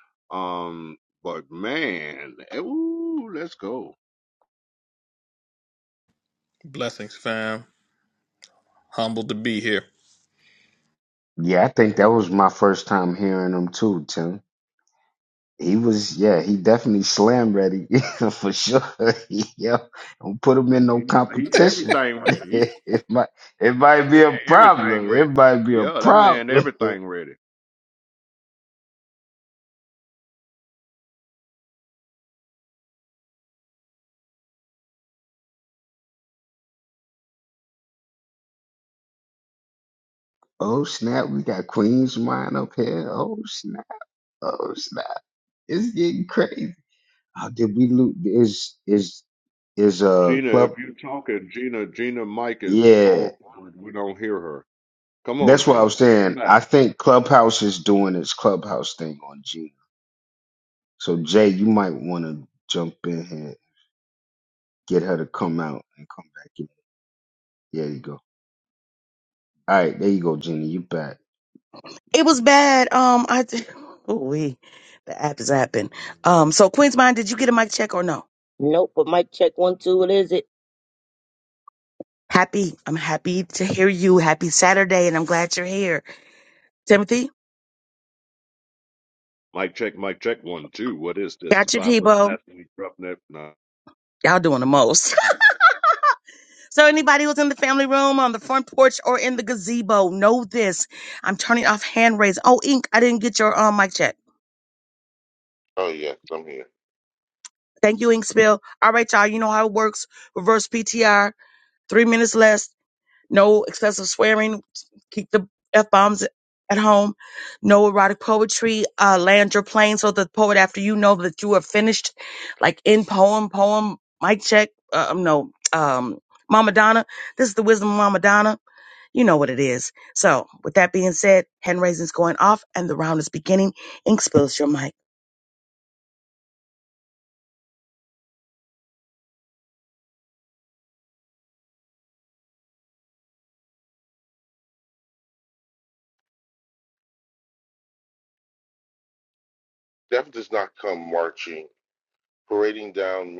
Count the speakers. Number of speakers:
6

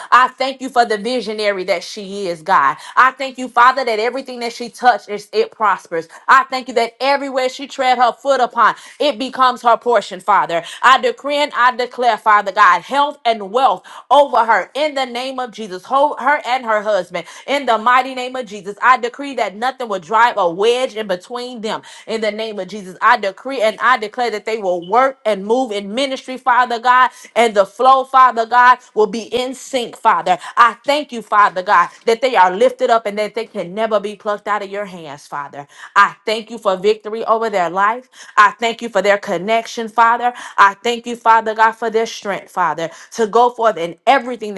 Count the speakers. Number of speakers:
1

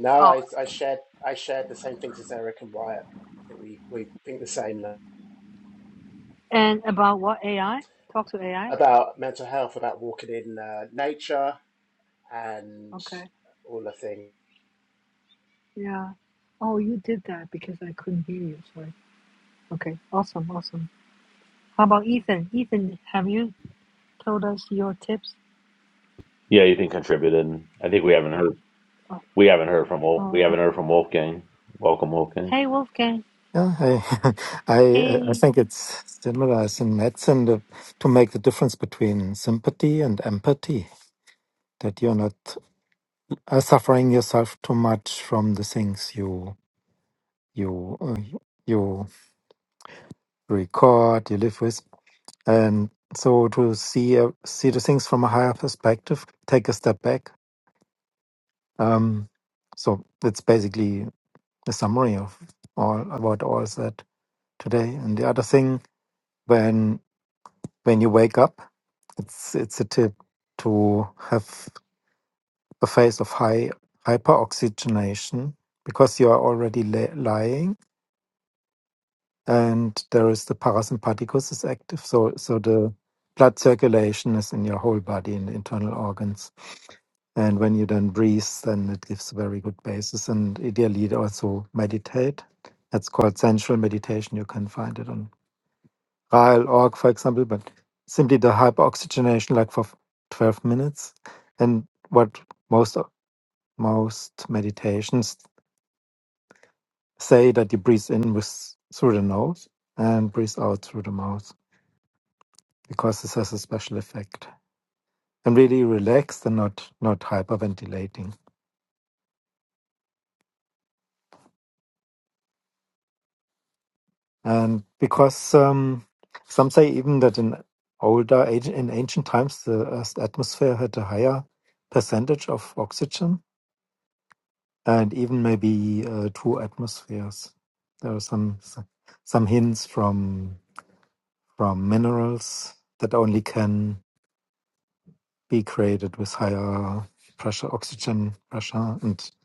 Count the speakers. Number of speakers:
4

